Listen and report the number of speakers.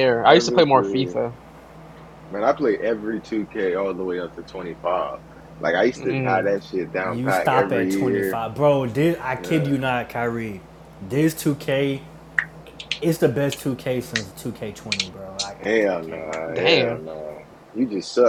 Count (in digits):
3